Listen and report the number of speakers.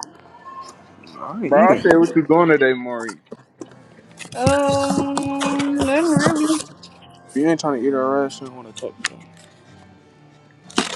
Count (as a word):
three